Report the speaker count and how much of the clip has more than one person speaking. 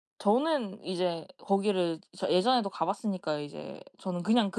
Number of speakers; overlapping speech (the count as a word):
one, no overlap